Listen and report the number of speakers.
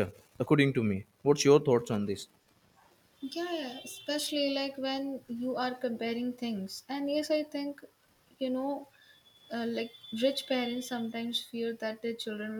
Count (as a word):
two